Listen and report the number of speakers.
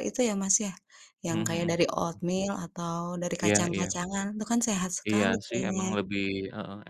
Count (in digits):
2